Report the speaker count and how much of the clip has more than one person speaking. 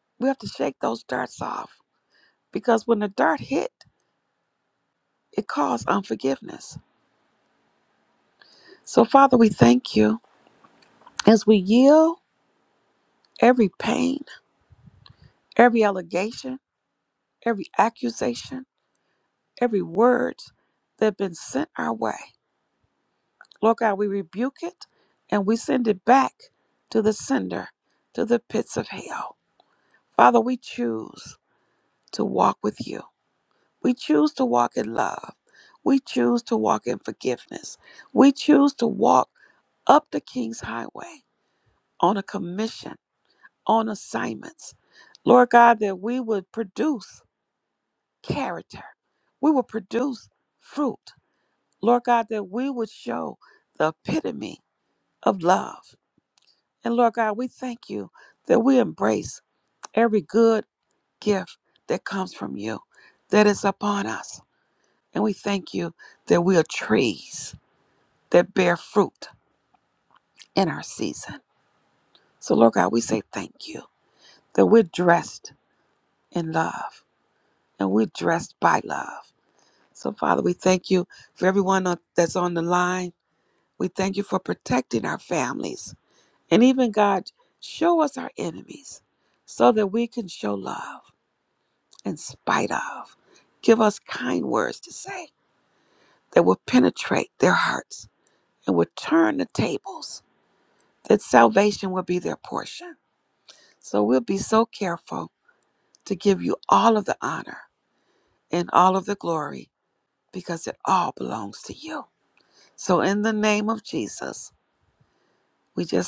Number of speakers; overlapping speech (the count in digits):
1, no overlap